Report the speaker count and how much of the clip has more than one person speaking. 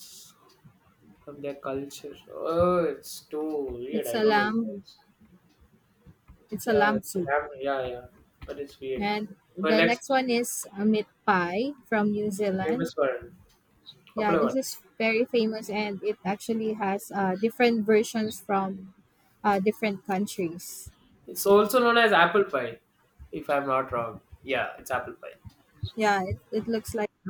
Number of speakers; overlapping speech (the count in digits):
2, about 9%